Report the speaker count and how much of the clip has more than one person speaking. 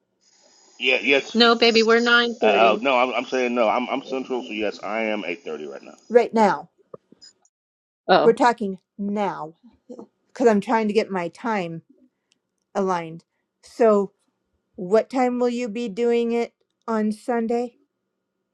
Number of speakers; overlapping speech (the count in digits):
3, about 3%